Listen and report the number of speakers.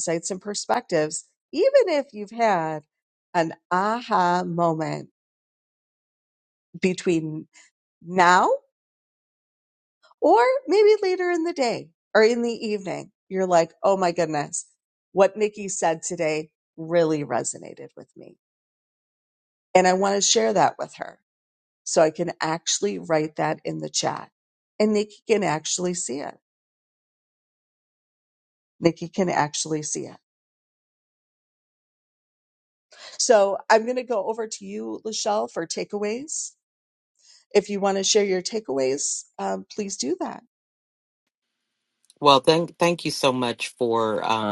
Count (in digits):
2